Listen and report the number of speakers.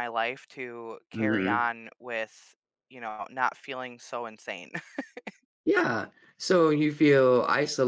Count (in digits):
2